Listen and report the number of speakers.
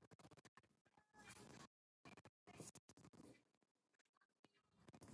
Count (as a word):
zero